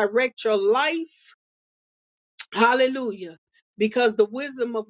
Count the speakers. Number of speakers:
one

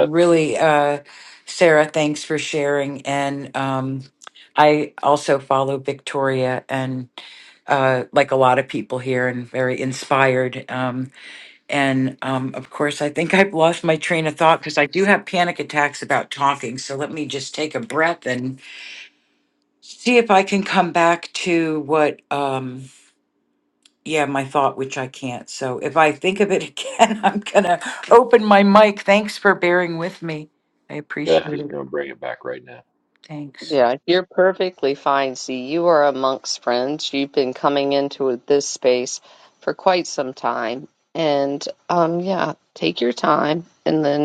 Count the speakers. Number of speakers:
three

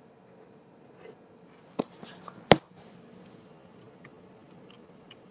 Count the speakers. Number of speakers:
zero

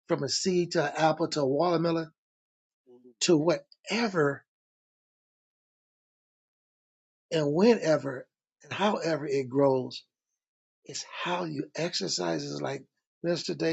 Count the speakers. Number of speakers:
one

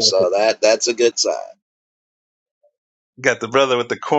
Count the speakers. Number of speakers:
two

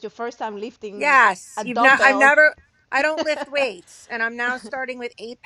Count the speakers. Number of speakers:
two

